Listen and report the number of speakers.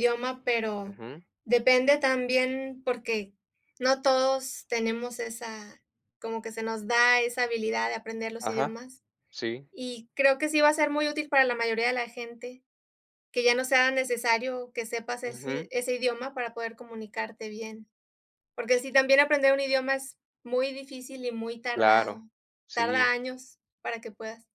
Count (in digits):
2